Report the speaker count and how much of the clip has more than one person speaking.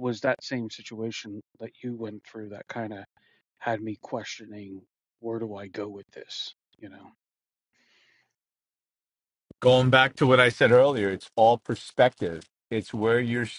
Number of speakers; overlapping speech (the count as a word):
two, no overlap